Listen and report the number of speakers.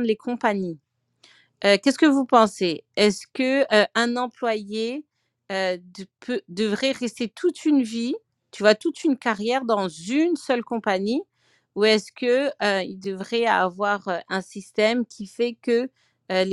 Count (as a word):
one